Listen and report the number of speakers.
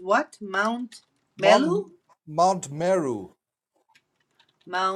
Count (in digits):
2